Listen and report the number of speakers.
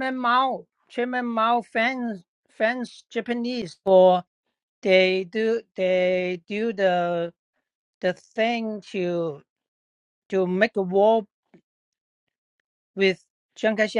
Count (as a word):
one